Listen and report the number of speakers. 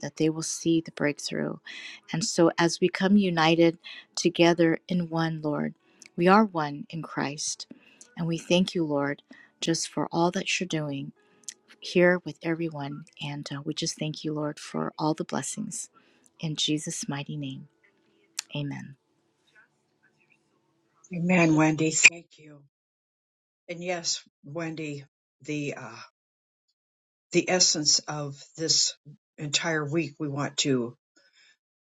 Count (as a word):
two